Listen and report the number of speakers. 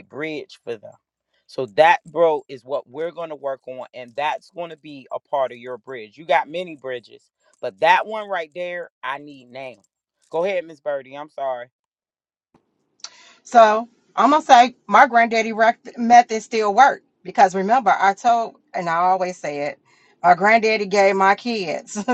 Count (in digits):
2